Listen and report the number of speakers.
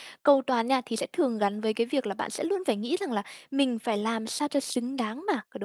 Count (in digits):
1